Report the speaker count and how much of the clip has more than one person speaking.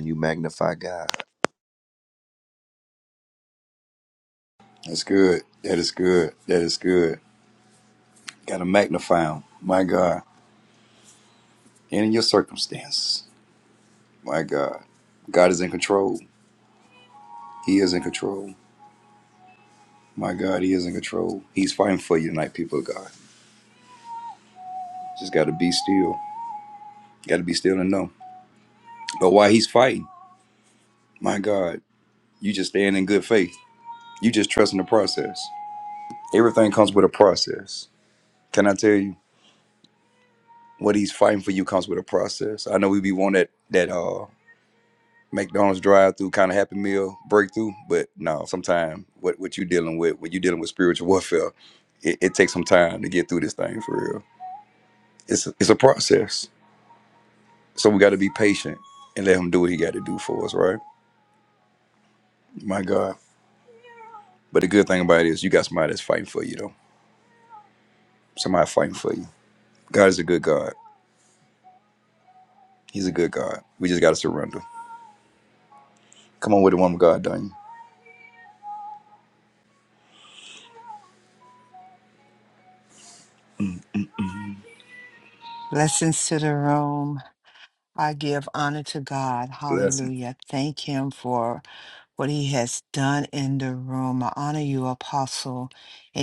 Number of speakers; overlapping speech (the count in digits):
3, under 1%